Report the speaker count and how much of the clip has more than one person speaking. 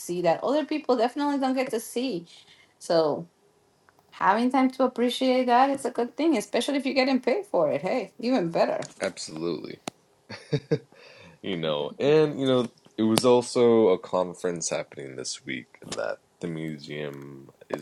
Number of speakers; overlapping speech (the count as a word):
two, no overlap